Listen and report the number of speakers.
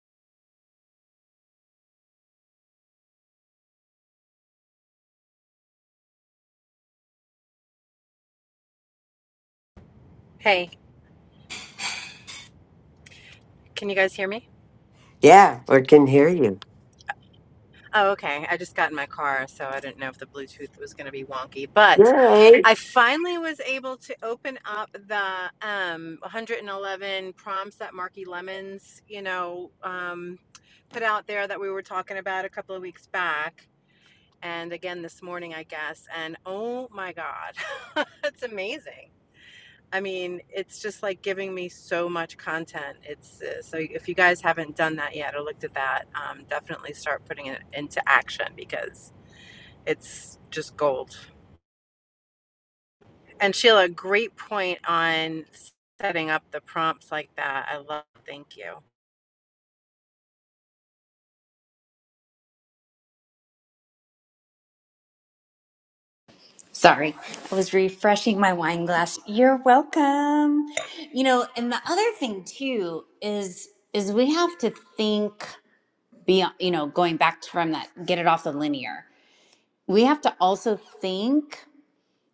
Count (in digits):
3